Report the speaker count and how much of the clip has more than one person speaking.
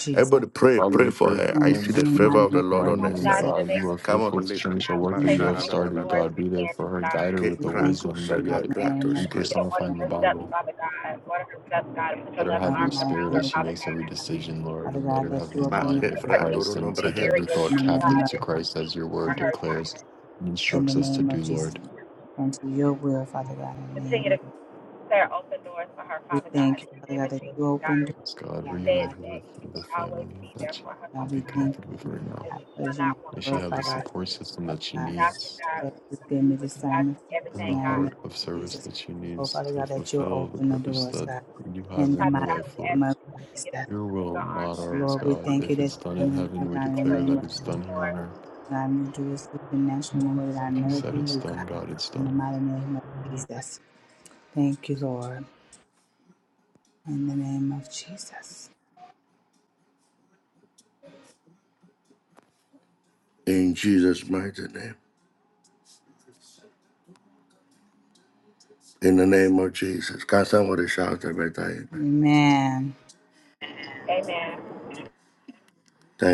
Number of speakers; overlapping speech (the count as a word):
four, about 49%